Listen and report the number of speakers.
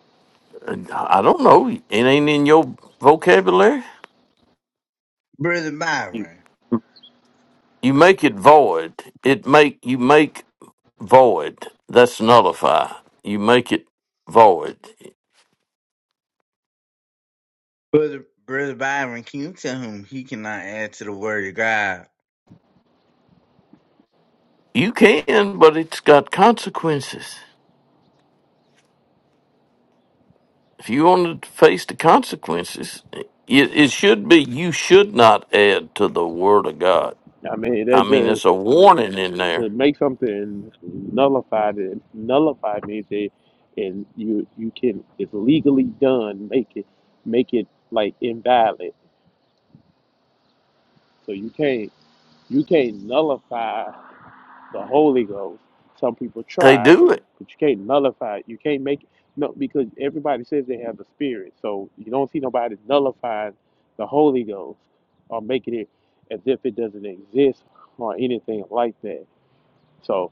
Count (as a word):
three